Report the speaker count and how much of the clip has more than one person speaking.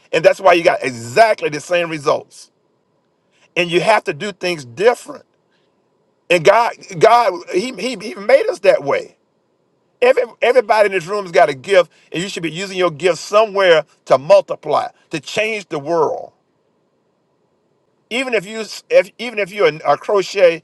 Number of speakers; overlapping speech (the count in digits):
1, no overlap